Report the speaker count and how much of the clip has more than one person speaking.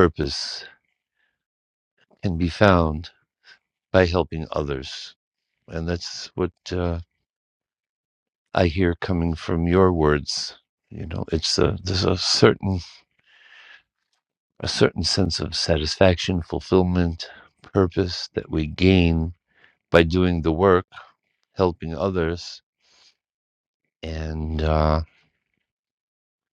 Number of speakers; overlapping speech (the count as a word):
one, no overlap